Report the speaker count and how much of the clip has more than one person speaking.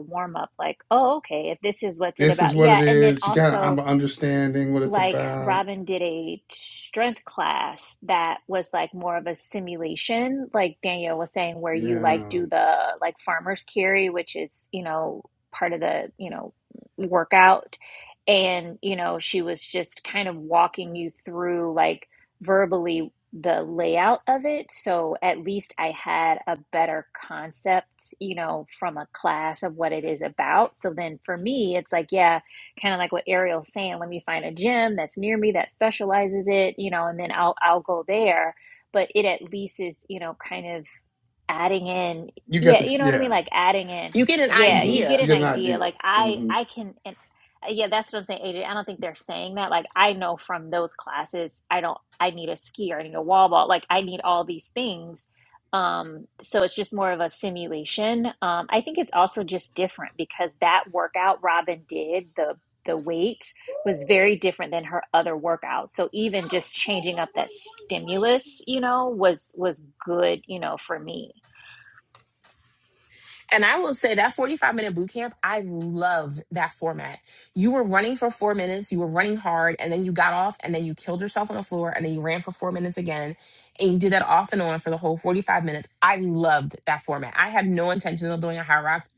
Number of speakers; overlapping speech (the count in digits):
3, about 7%